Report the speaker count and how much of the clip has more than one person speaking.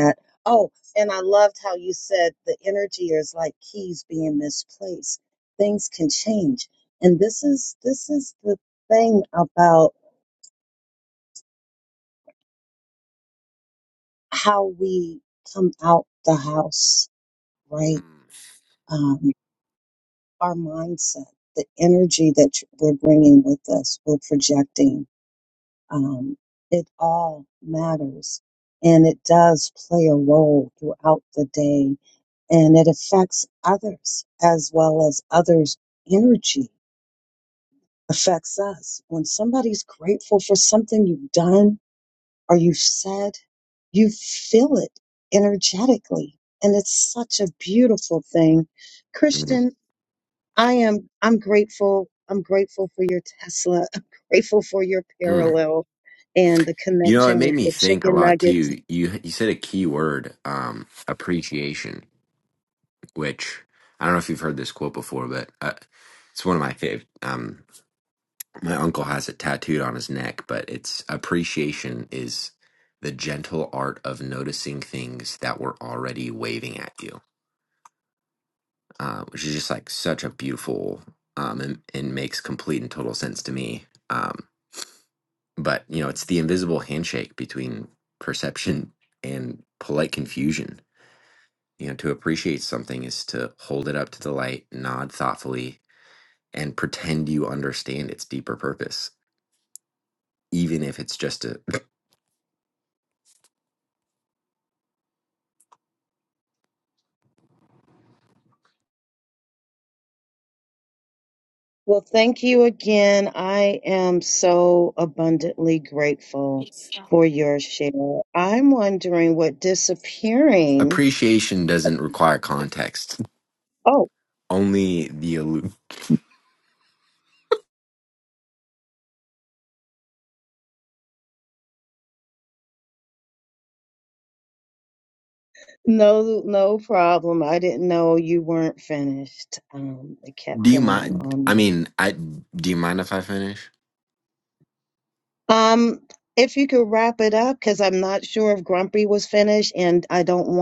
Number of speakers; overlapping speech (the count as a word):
two, about 2%